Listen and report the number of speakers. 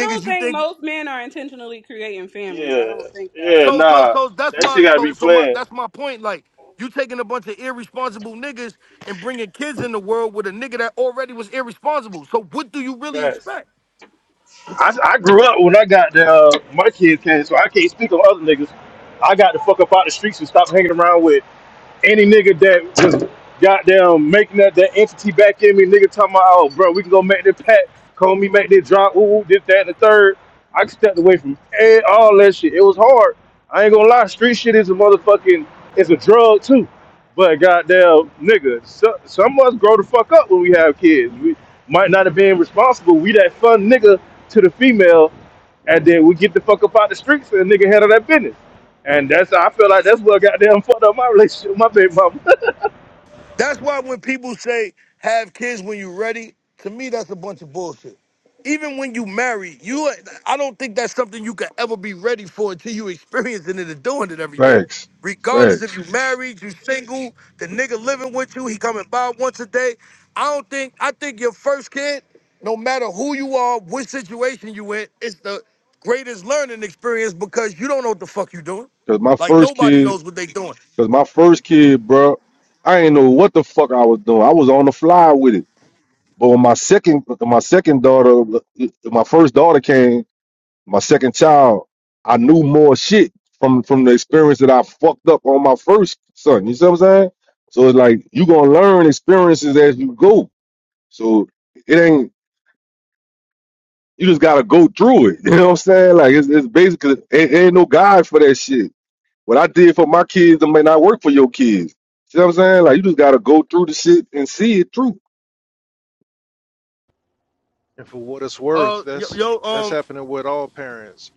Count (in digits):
5